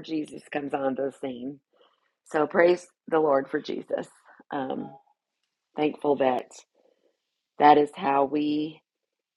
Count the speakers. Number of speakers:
1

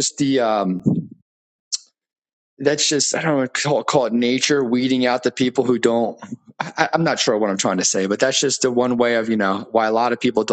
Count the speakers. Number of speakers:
1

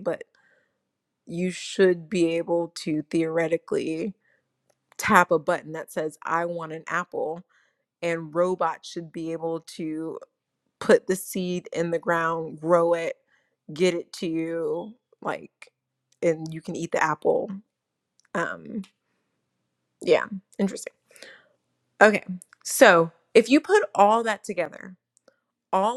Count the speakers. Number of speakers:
1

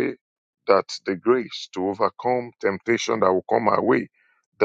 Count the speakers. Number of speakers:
1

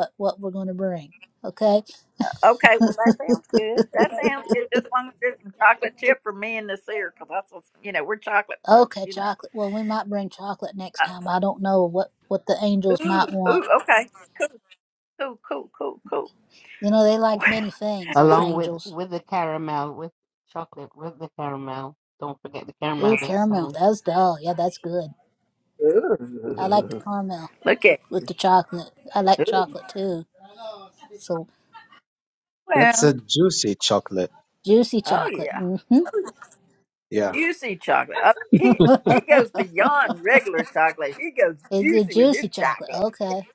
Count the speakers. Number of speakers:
4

